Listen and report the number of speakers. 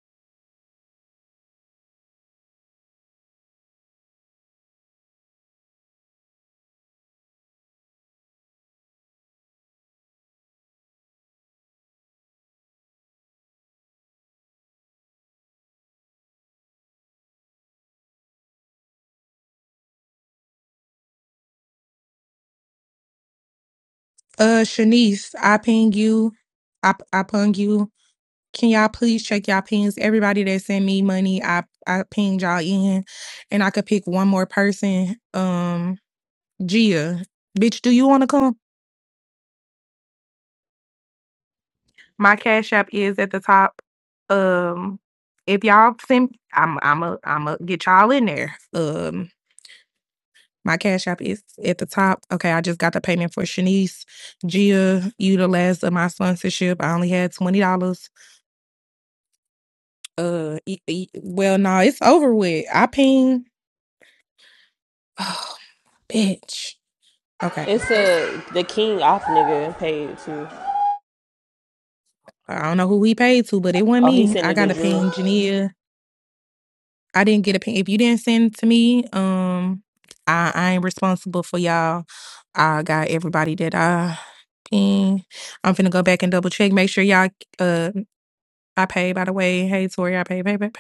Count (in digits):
2